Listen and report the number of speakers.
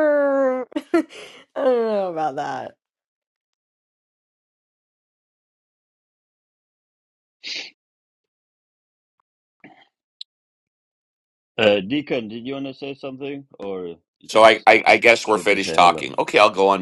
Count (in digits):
3